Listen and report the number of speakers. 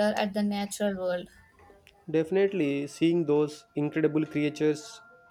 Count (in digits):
2